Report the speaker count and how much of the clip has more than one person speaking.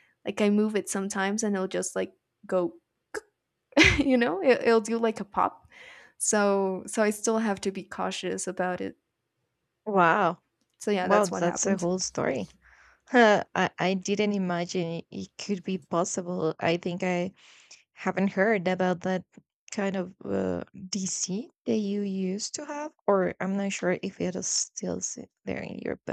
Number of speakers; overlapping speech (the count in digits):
2, about 3%